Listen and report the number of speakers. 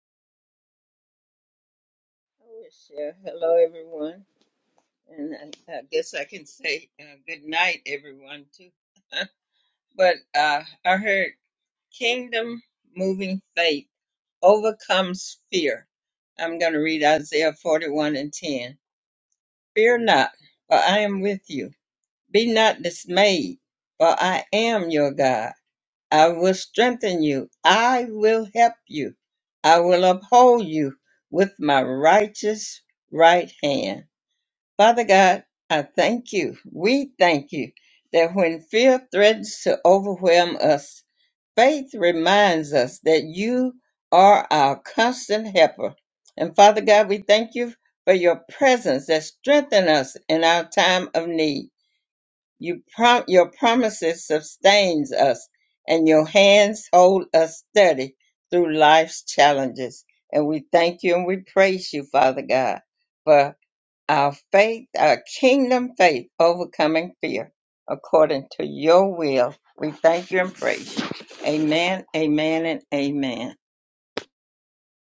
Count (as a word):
one